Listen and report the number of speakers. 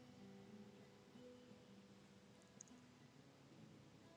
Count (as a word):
zero